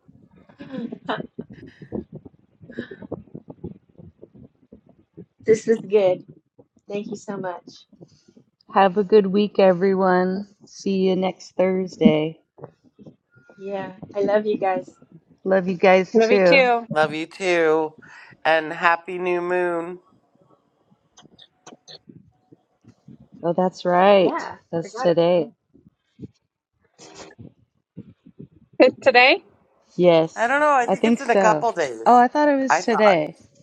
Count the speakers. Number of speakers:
four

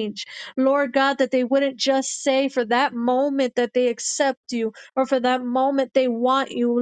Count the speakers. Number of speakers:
one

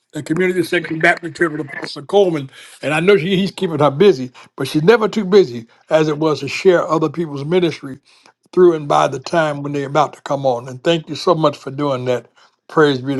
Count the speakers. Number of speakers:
one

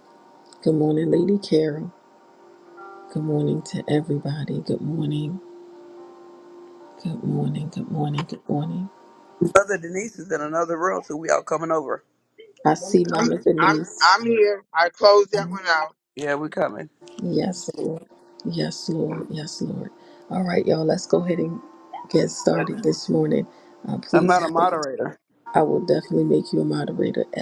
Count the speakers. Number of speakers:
three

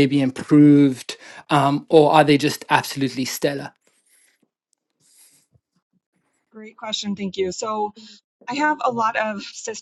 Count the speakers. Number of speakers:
two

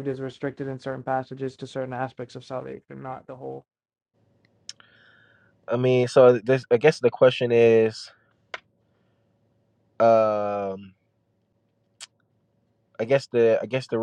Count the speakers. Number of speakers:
two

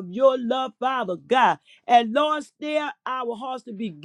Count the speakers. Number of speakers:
one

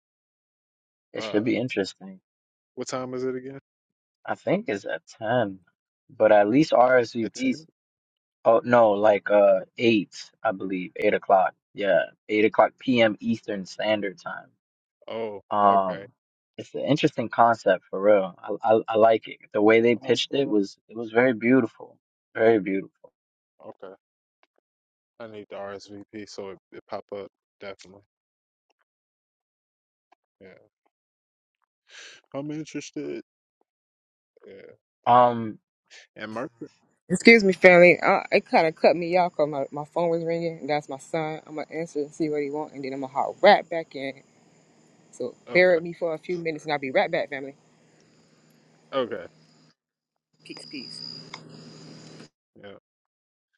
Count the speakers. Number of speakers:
three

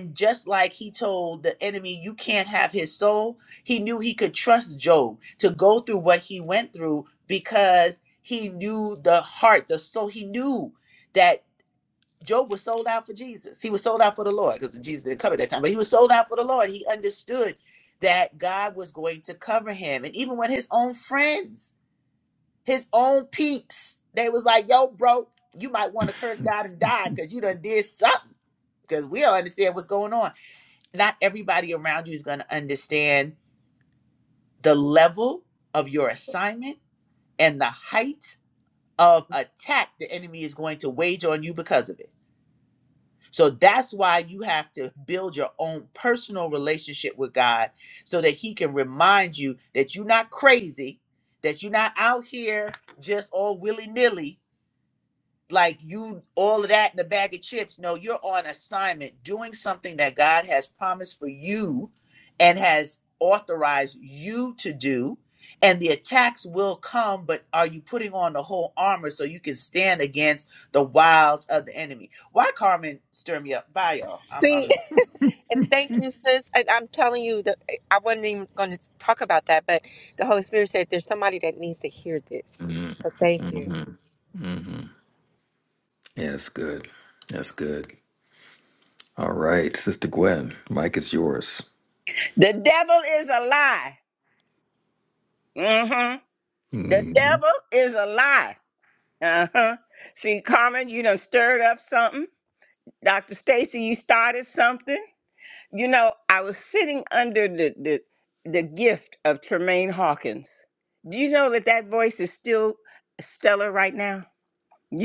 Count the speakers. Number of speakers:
four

